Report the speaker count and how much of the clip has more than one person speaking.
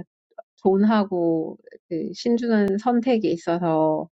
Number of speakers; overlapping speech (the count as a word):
one, no overlap